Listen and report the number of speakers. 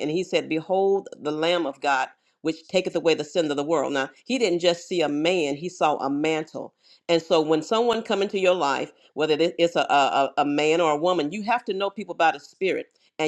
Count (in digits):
1